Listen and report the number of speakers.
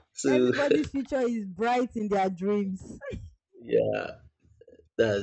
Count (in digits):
2